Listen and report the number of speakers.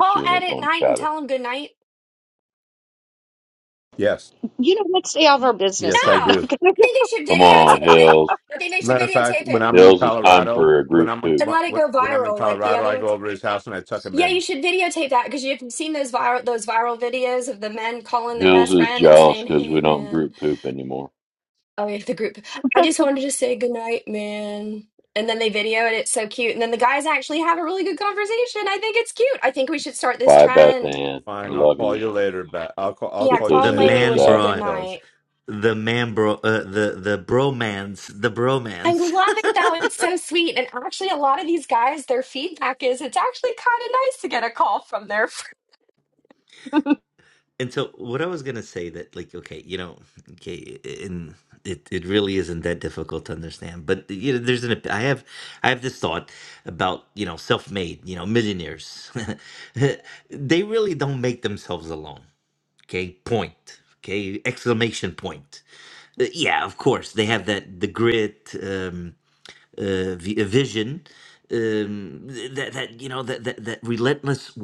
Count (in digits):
5